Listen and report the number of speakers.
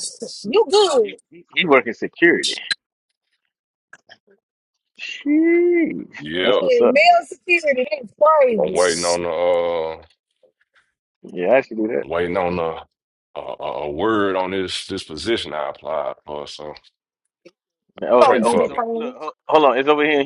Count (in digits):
3